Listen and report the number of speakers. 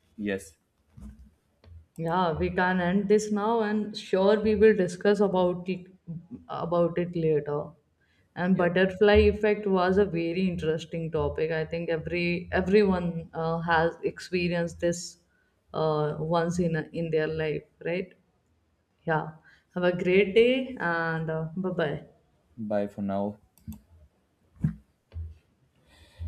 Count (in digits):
2